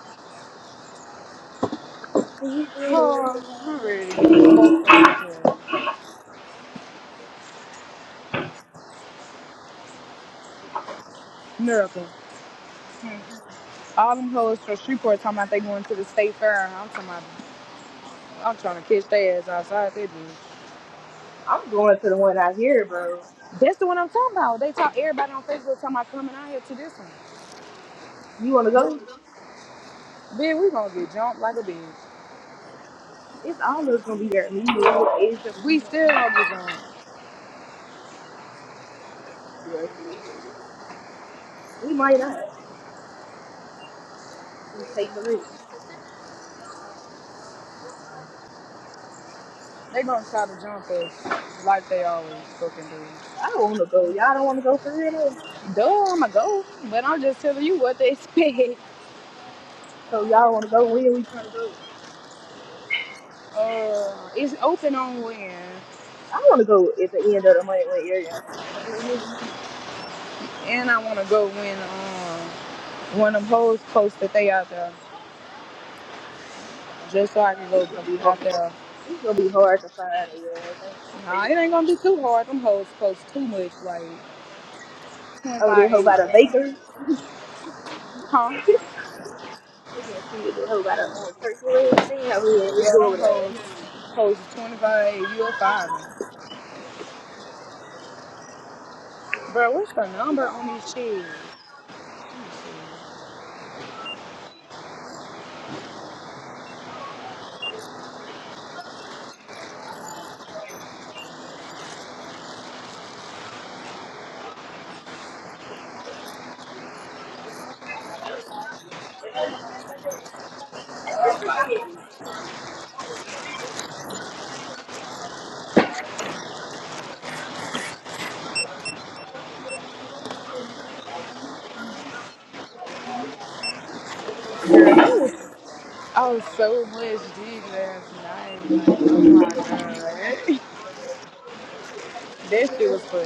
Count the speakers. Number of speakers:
2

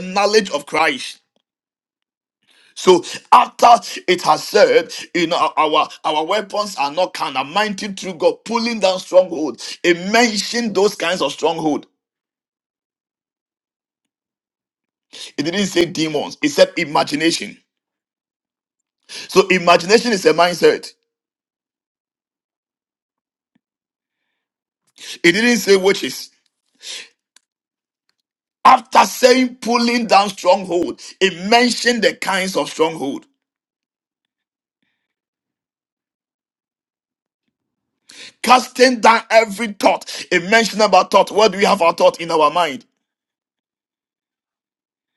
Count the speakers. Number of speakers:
1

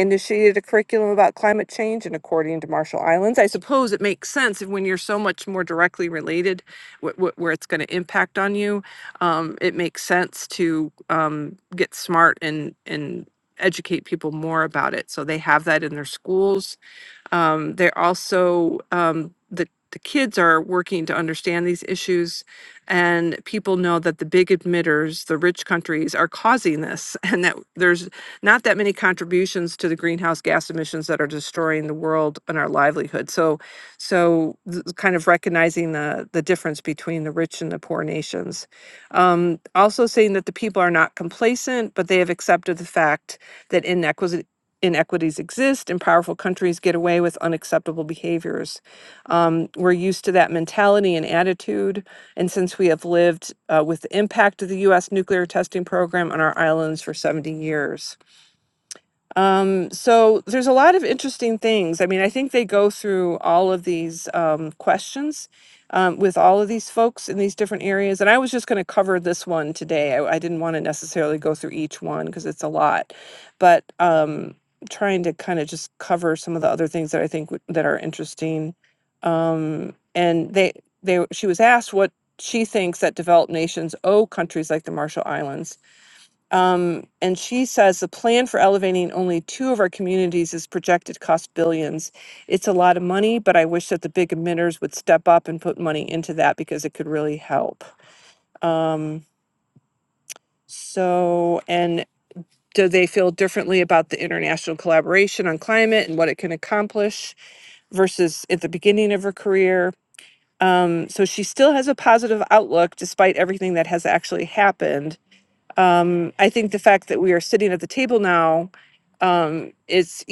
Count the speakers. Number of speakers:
1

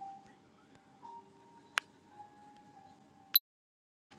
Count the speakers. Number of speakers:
0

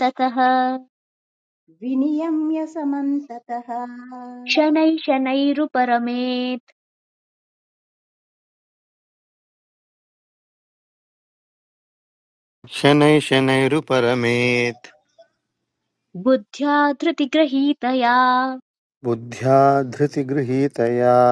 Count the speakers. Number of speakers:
3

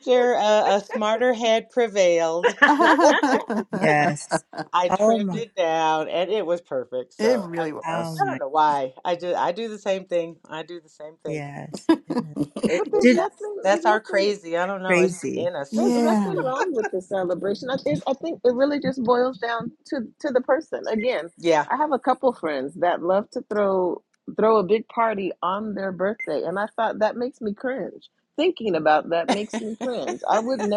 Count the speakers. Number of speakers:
4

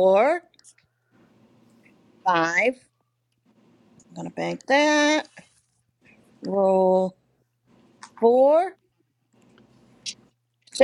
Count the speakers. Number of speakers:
1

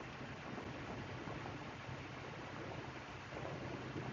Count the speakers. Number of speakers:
0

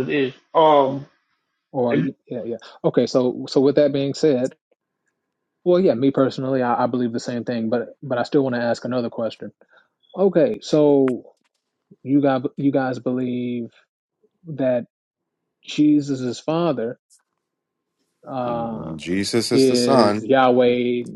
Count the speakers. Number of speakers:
3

